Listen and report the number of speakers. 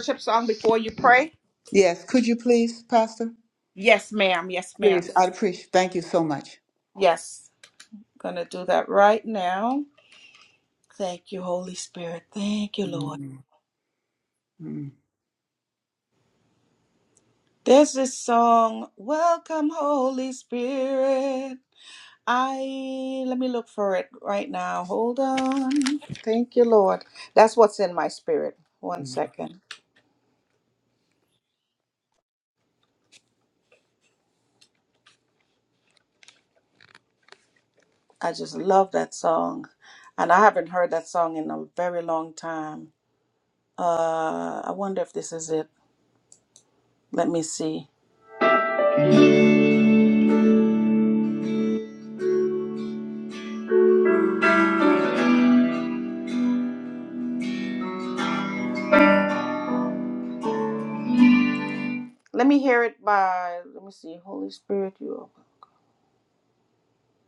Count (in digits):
2